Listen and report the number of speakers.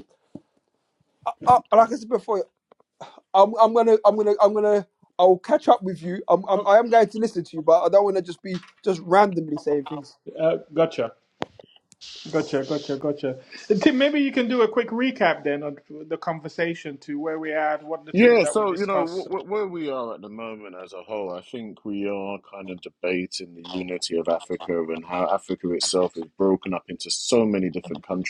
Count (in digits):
3